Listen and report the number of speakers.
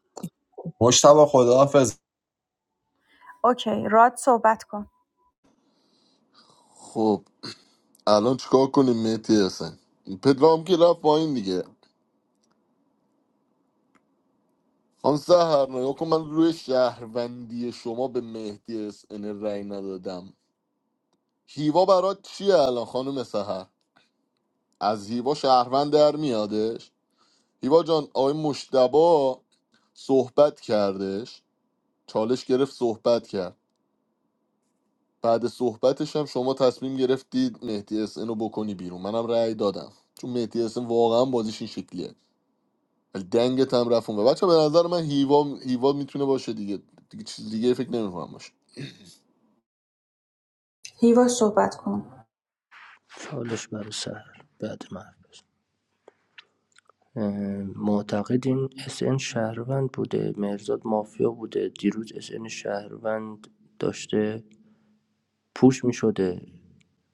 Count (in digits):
4